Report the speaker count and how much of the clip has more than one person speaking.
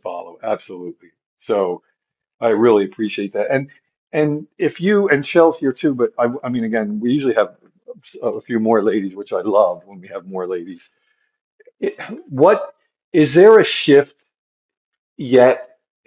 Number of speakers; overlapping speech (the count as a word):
one, no overlap